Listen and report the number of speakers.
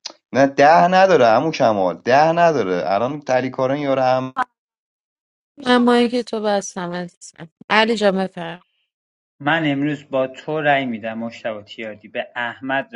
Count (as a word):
three